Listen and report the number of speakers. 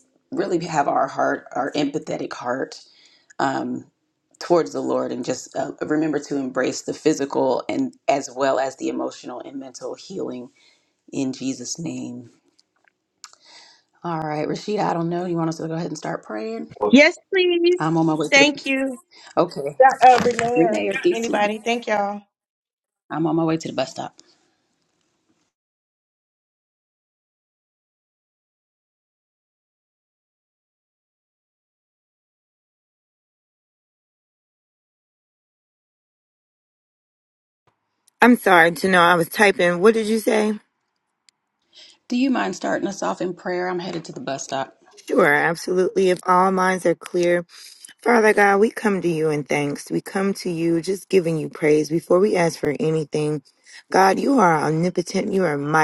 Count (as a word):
three